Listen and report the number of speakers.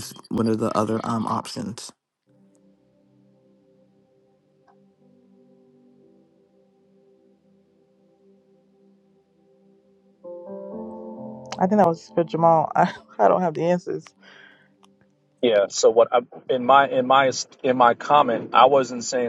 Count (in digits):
3